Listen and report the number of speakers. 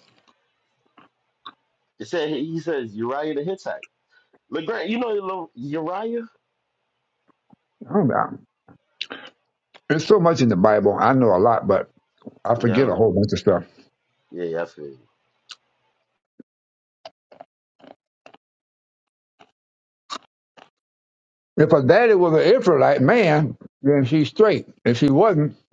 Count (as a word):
two